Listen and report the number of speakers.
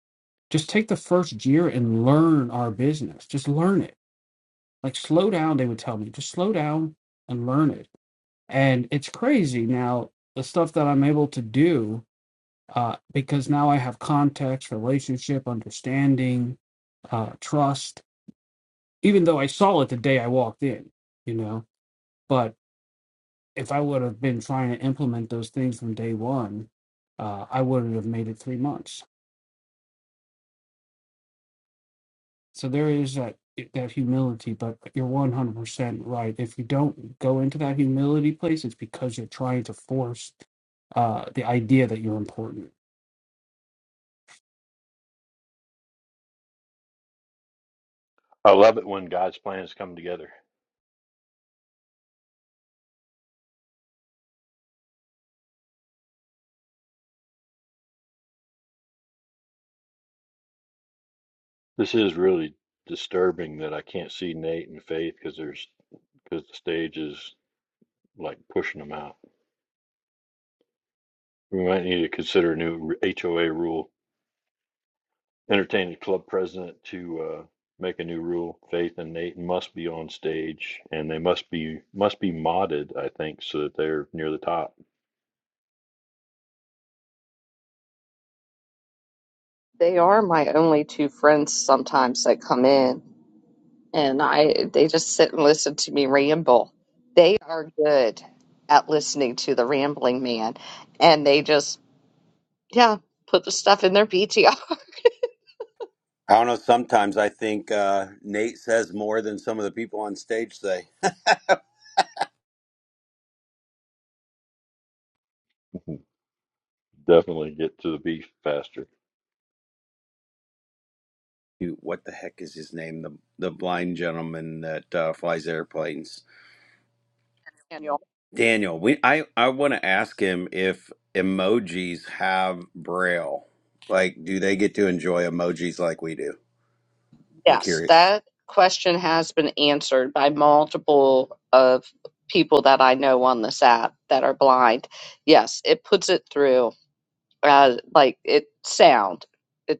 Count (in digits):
4